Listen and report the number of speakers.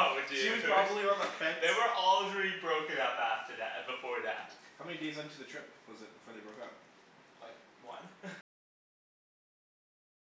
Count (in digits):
2